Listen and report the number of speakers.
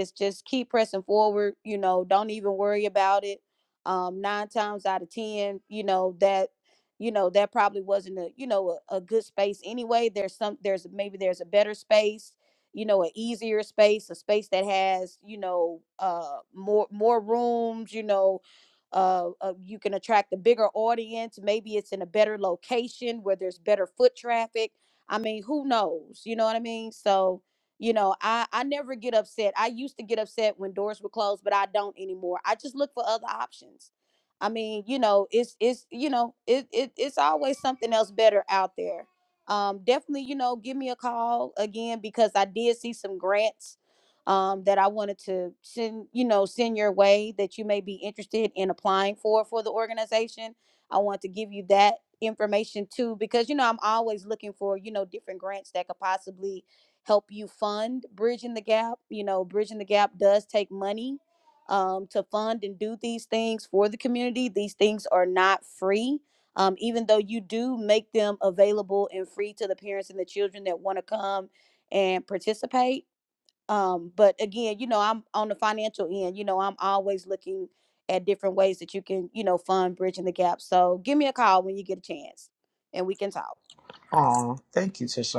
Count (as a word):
two